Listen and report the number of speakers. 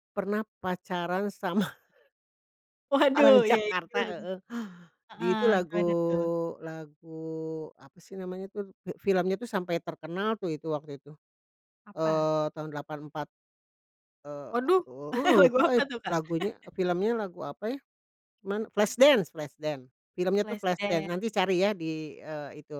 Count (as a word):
two